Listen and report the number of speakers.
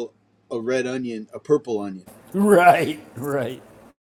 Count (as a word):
two